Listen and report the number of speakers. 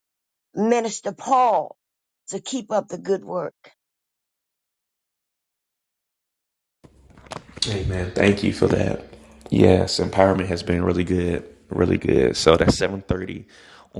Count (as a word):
two